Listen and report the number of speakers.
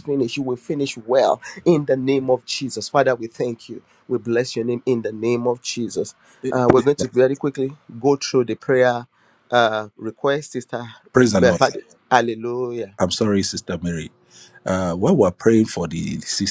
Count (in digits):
2